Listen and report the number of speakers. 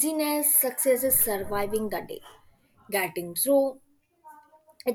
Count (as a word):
one